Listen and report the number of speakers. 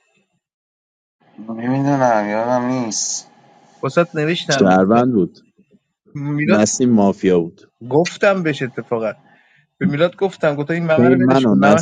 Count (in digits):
3